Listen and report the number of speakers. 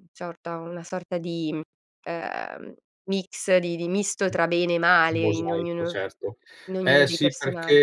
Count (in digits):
2